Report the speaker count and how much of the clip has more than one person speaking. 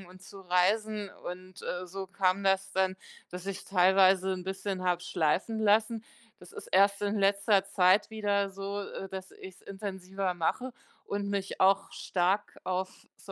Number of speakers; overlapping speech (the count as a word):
one, no overlap